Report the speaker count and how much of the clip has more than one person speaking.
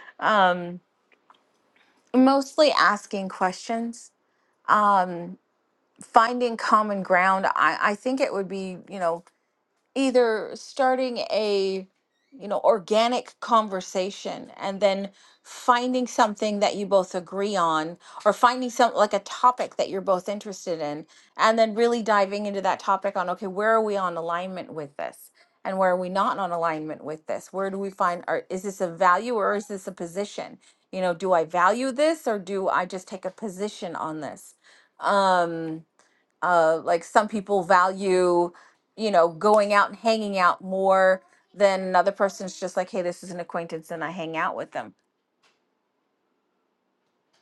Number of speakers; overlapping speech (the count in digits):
1, no overlap